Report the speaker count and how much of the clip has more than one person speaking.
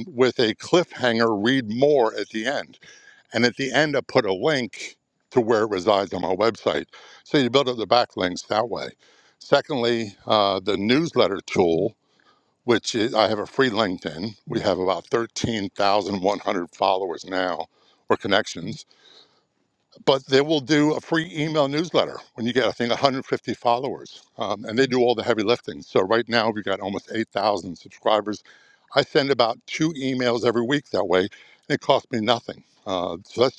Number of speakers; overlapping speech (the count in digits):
1, no overlap